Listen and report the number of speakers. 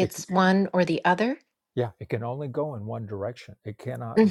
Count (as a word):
two